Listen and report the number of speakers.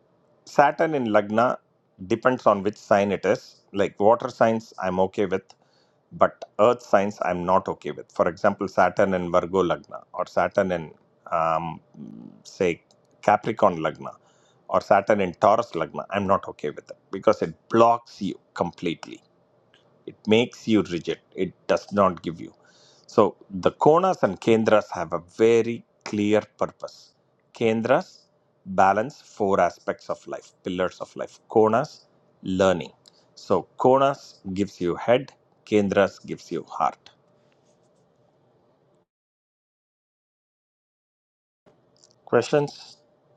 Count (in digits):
1